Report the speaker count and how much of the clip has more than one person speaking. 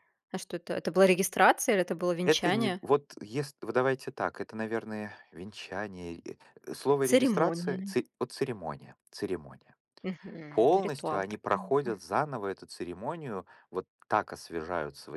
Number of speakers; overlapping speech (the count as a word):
two, about 15%